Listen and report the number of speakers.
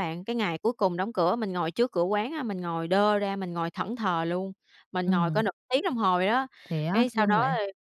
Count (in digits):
2